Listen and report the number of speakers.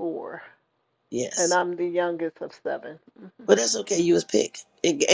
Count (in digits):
2